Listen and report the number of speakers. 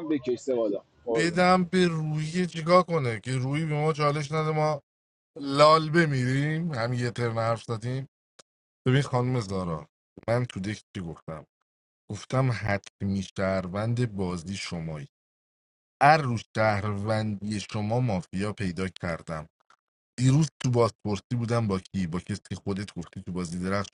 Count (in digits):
2